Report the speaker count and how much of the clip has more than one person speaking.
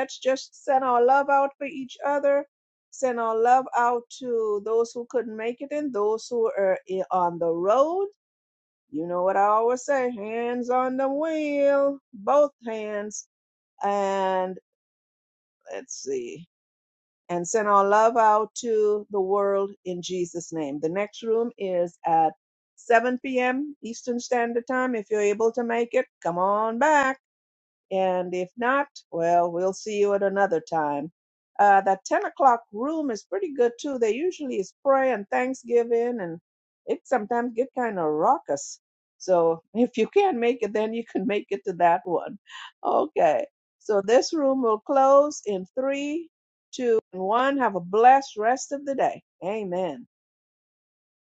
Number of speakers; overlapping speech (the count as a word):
one, no overlap